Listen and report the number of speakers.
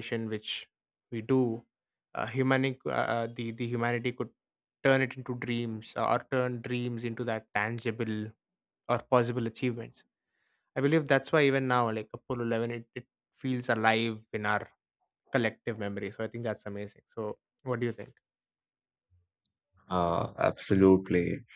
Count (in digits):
2